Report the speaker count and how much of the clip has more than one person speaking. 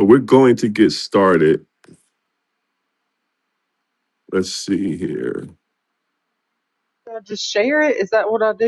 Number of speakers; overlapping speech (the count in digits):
2, no overlap